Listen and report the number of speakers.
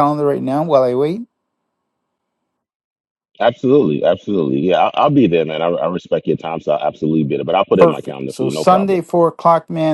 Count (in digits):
2